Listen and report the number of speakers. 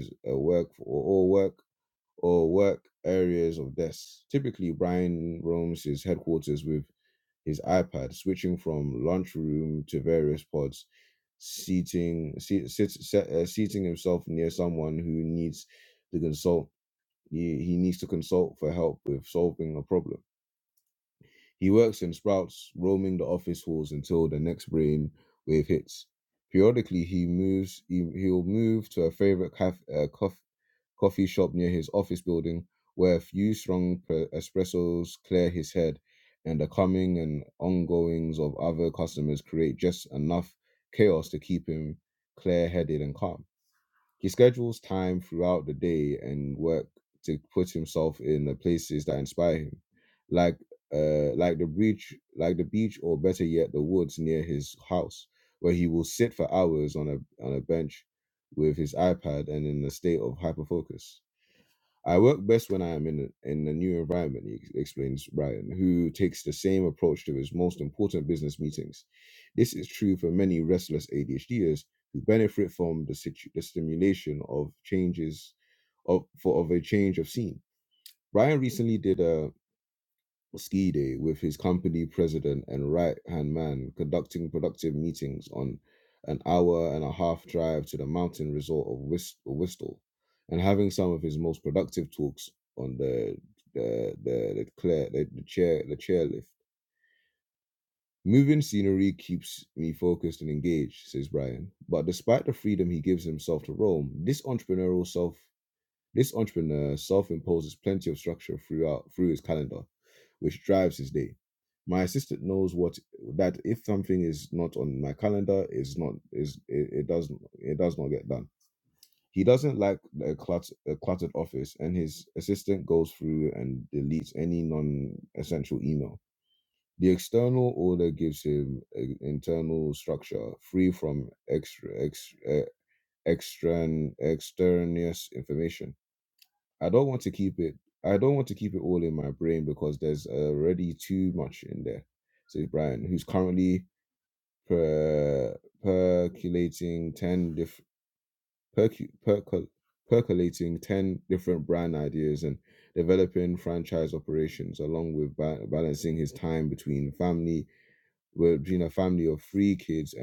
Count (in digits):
1